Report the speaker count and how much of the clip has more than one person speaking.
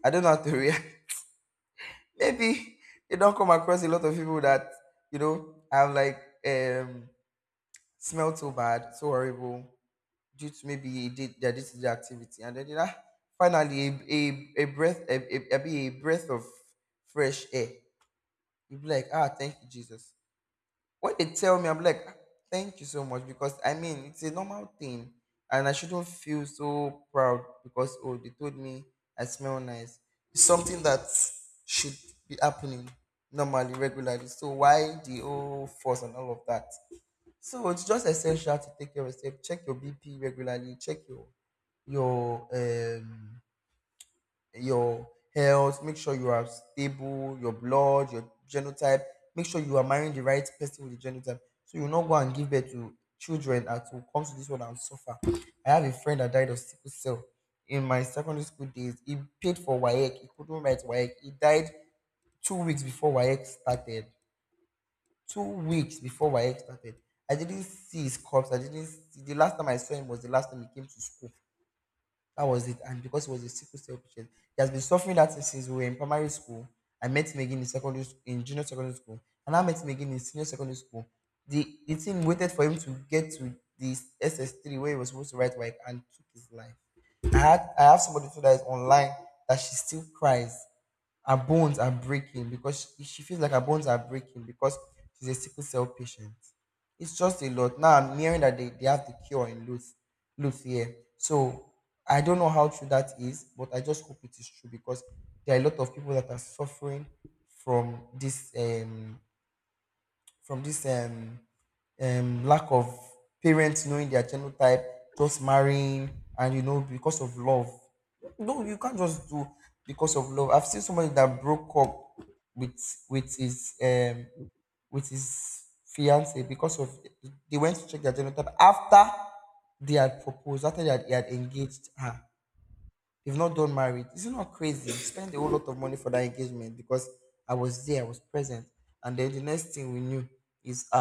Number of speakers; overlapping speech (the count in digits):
1, no overlap